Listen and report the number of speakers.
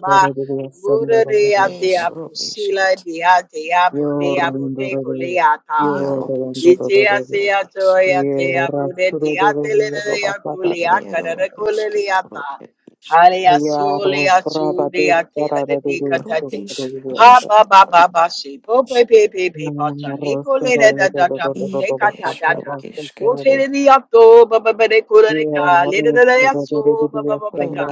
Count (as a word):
three